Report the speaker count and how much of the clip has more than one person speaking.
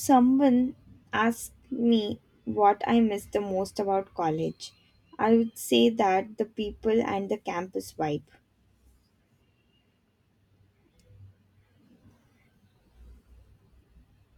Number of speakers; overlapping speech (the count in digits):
1, no overlap